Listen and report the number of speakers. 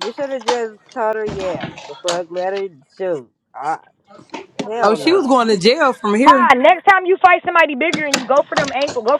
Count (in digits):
3